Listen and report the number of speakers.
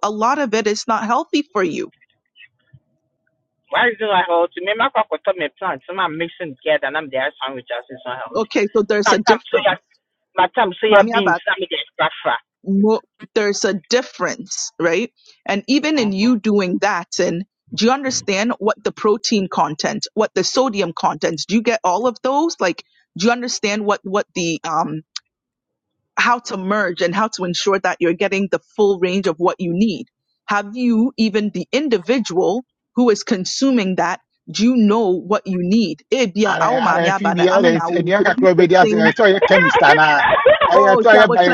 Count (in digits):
3